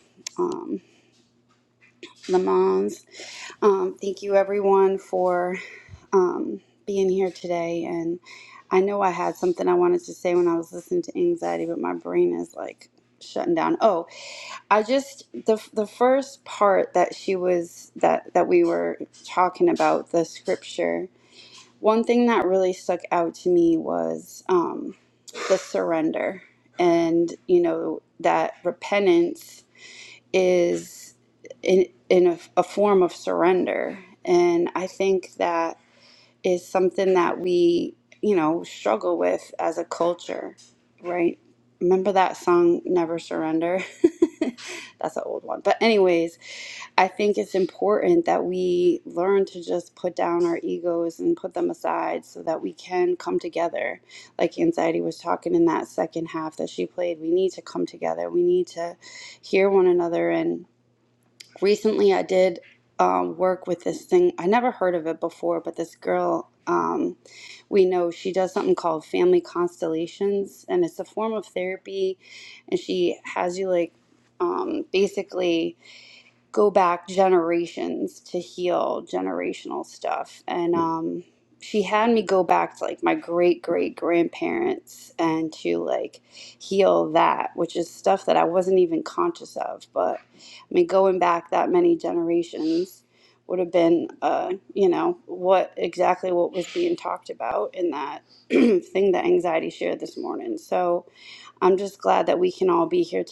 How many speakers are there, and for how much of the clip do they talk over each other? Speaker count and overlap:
one, no overlap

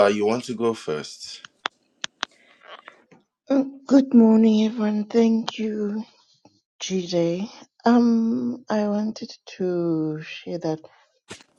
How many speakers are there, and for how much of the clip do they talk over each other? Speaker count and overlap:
two, no overlap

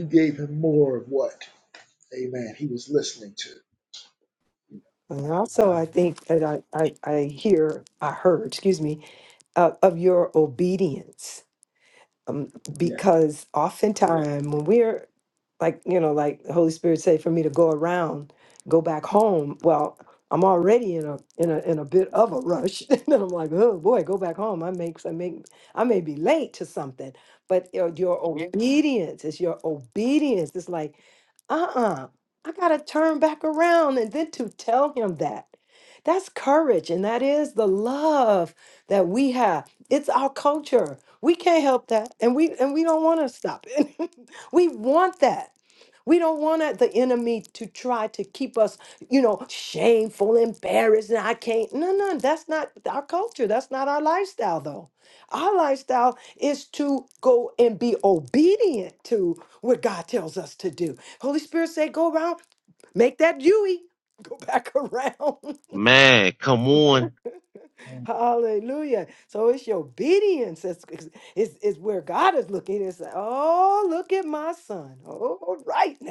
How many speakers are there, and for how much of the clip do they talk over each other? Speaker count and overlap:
three, under 1%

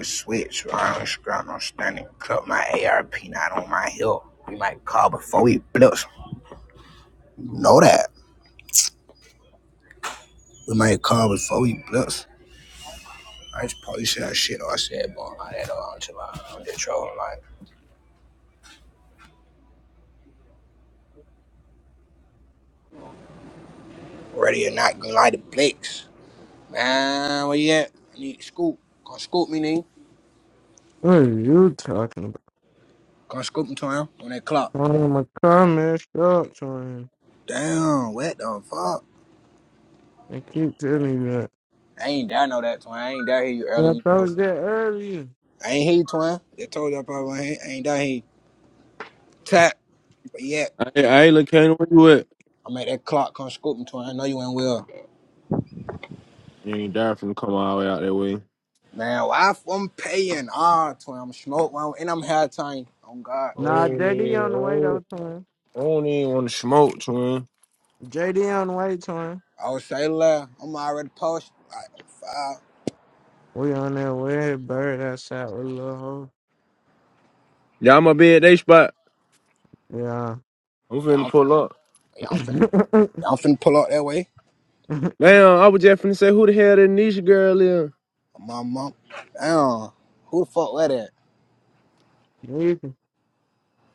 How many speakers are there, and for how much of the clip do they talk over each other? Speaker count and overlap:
three, about 2%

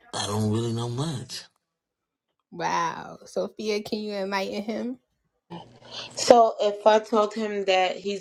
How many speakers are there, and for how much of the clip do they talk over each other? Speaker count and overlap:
three, no overlap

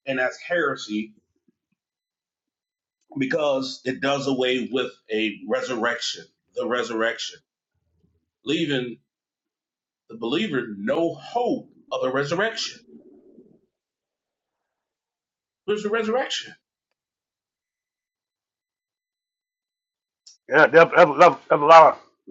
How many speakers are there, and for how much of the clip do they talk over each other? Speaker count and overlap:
two, no overlap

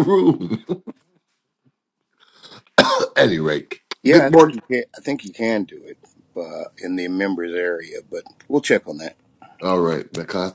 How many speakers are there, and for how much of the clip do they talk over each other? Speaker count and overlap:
two, about 5%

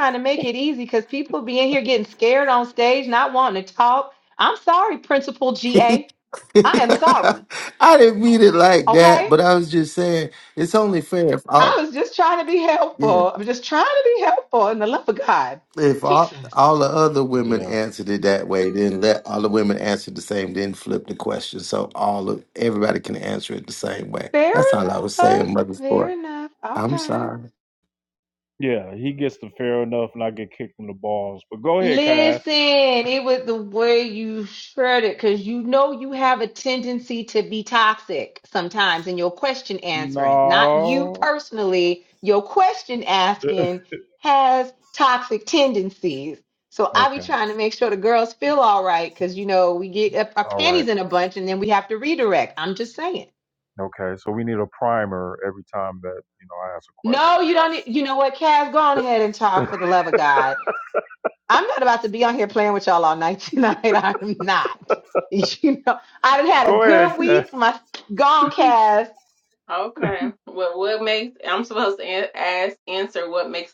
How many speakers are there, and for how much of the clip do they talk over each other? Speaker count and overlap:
four, about 11%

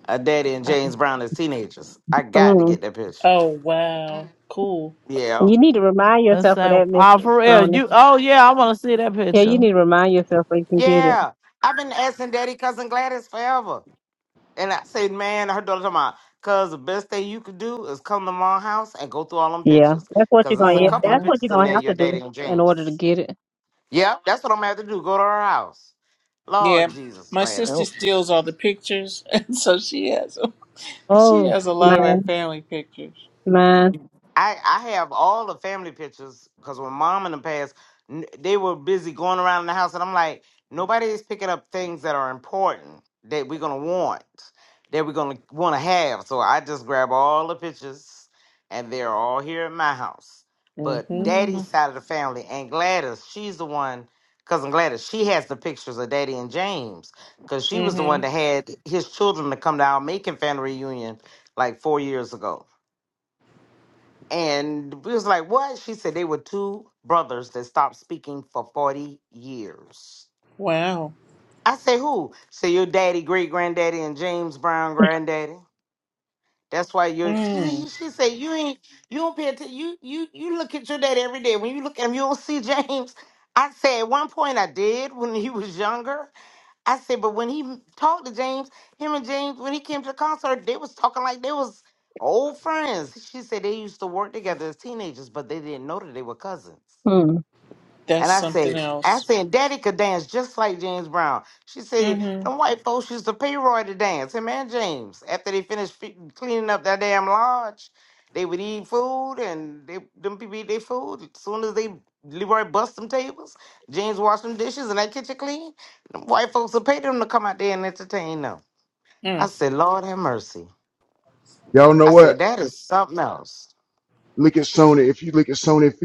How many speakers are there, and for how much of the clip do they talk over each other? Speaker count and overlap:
five, about 8%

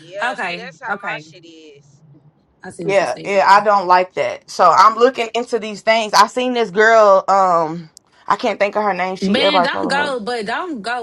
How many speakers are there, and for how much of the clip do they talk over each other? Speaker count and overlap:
three, about 23%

